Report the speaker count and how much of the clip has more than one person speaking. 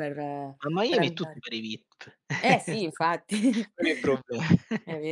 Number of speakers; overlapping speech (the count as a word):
two, about 9%